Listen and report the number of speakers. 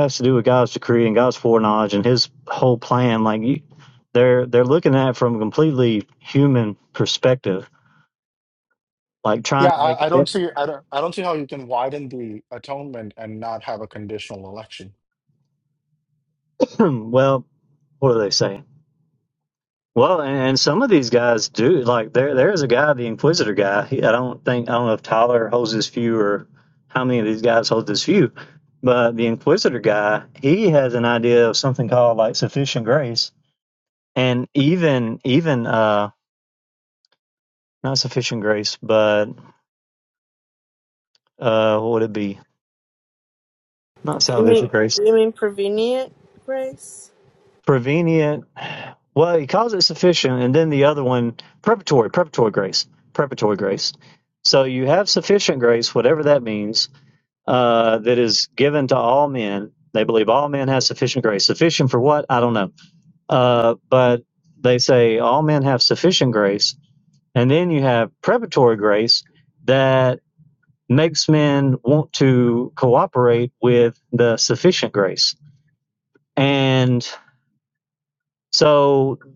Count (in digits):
3